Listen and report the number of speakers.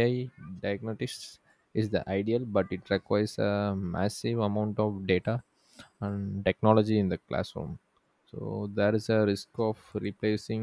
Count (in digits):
1